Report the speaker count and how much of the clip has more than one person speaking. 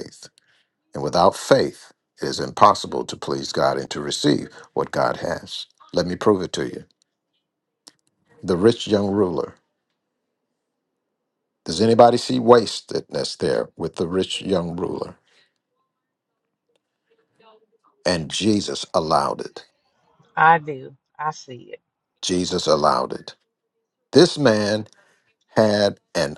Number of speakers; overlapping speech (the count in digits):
2, no overlap